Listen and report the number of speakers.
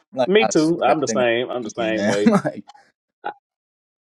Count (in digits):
2